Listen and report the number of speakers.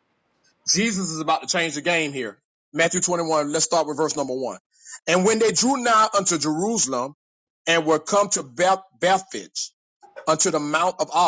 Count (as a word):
one